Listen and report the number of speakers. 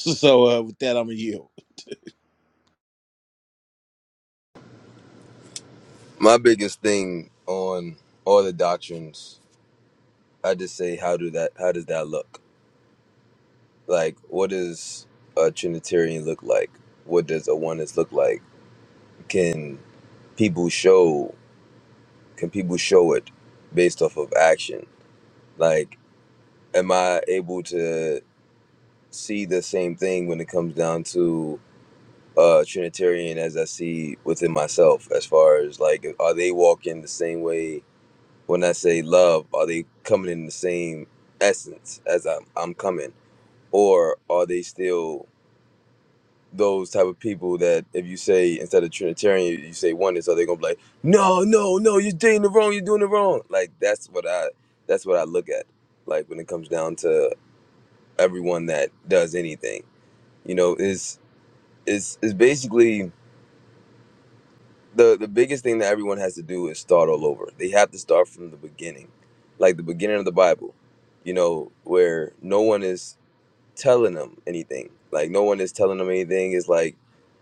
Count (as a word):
two